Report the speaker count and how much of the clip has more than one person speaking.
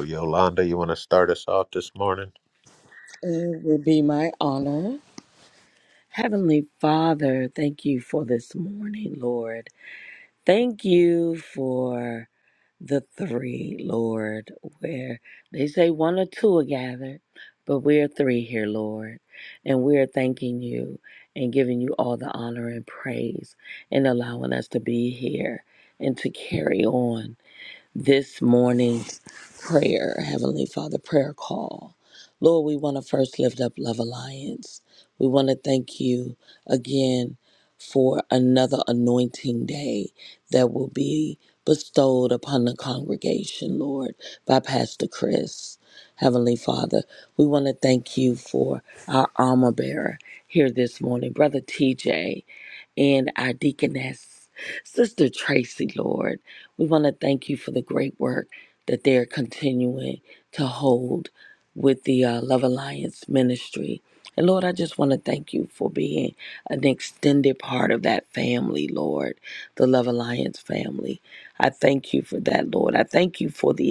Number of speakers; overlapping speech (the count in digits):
2, no overlap